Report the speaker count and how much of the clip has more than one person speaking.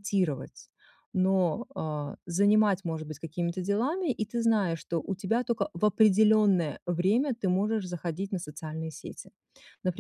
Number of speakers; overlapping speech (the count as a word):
one, no overlap